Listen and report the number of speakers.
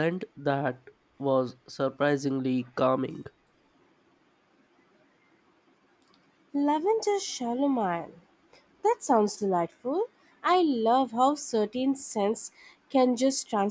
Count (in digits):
2